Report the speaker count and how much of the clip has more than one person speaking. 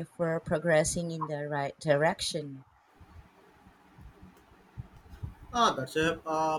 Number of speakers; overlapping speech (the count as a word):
two, no overlap